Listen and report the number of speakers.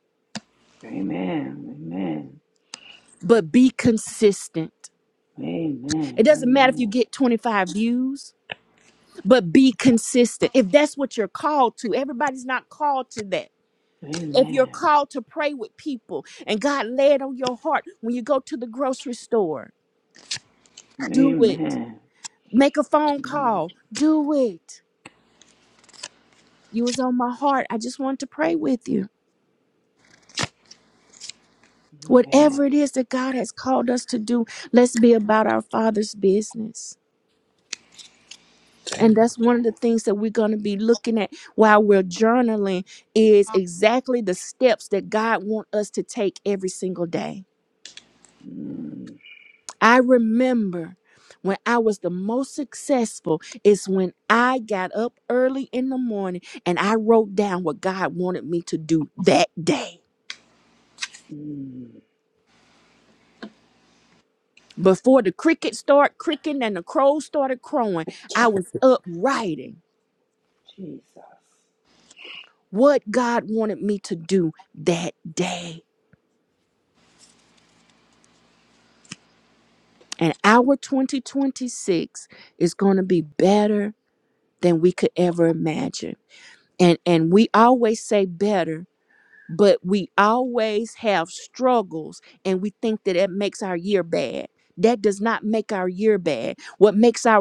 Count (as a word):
two